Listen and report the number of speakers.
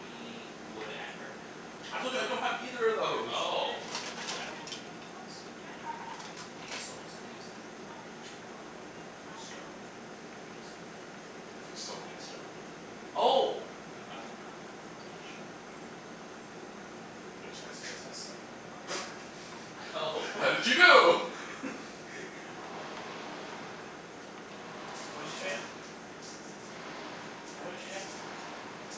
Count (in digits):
3